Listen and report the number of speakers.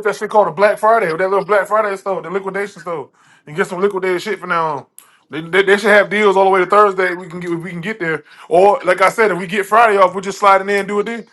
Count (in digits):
1